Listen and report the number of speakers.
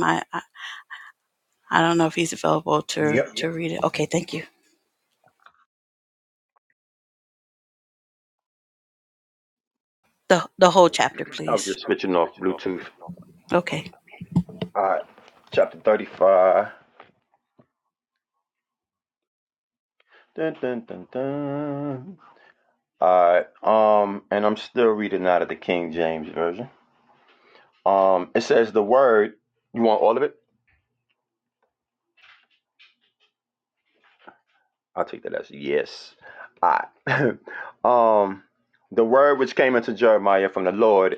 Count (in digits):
2